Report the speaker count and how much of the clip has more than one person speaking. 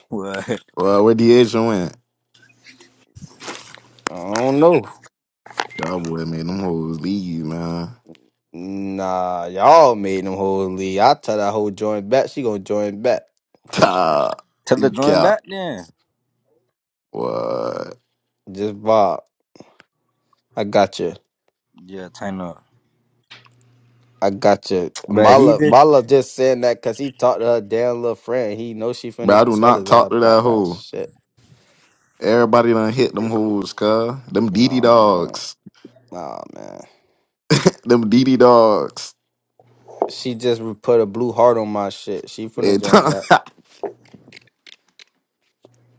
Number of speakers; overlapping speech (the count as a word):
three, about 9%